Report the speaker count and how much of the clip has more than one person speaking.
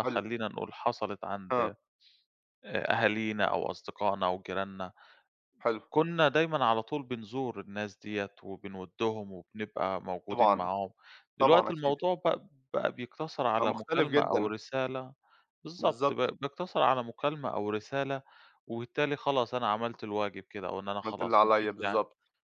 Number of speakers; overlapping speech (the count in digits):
2, about 14%